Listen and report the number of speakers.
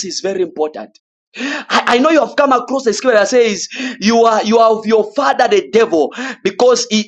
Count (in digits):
1